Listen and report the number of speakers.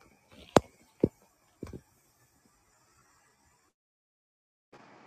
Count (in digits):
0